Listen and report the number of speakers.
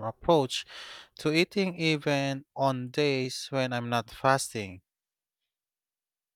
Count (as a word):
one